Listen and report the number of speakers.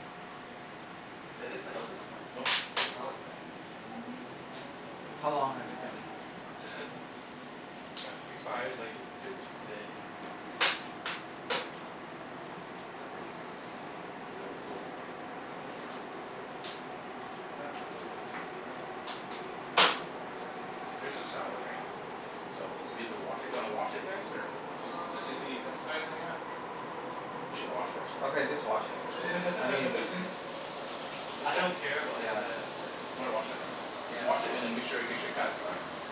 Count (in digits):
4